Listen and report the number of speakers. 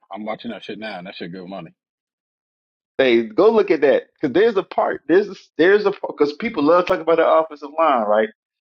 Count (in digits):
2